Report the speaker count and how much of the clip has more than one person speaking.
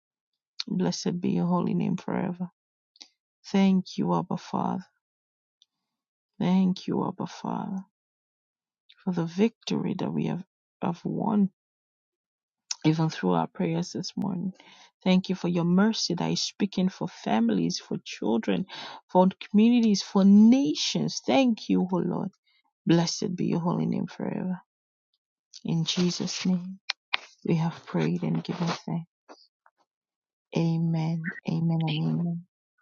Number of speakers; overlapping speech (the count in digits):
1, no overlap